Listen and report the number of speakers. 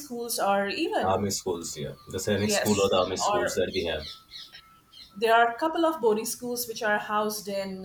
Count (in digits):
2